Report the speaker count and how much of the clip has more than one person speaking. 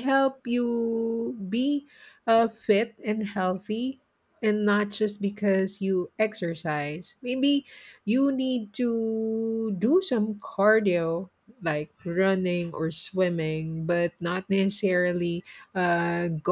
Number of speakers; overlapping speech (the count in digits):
1, no overlap